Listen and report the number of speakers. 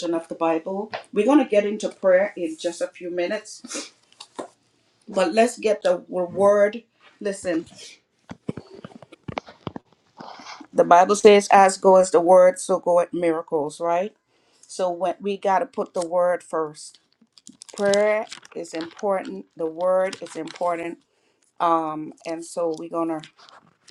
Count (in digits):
1